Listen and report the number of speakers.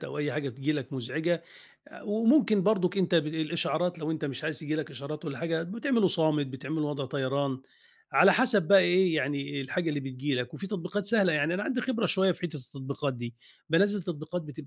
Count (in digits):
1